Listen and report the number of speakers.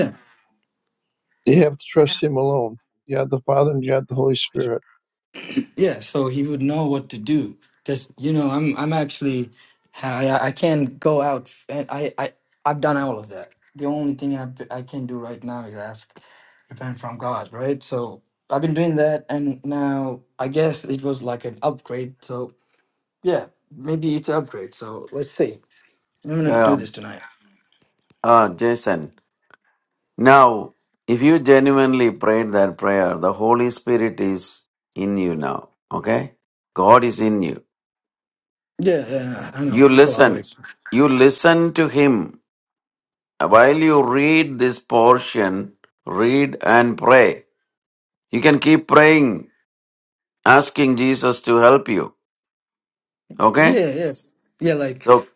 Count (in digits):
3